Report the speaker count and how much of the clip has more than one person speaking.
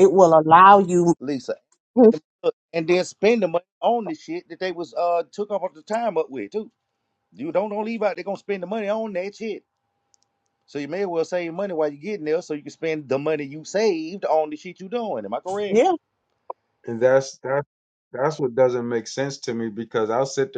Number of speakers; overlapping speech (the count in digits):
3, about 1%